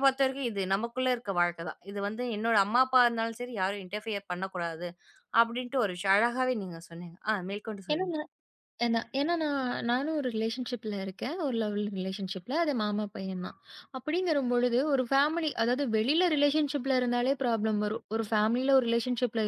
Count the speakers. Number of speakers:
2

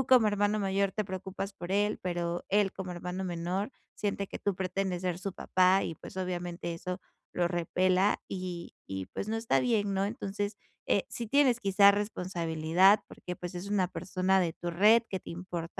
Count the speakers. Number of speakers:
1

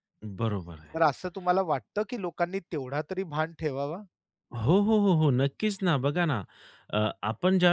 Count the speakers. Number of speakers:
2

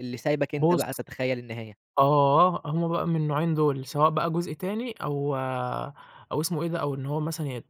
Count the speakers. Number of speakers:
2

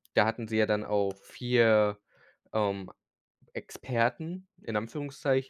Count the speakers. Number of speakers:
1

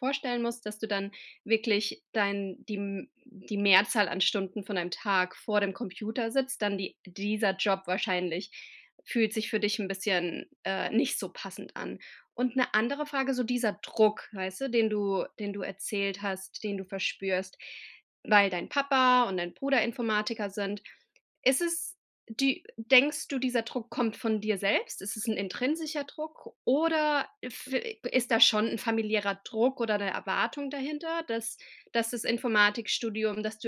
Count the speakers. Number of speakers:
1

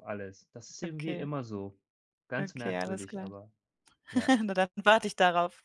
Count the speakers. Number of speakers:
2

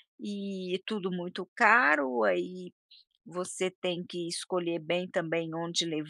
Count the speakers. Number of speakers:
1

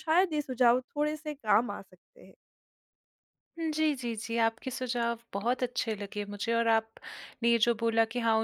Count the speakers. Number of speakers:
2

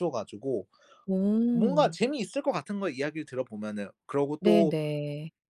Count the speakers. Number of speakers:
2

